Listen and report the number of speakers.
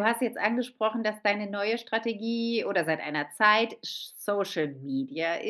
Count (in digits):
1